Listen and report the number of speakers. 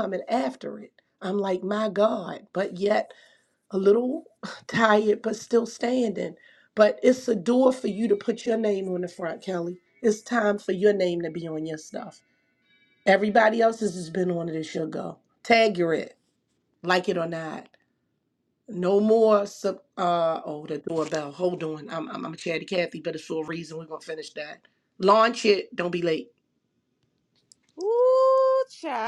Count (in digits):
2